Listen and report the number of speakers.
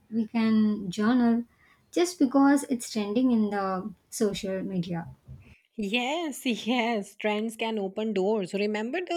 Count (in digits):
2